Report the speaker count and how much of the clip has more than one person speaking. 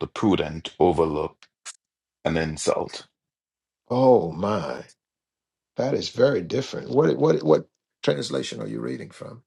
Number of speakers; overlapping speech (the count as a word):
two, no overlap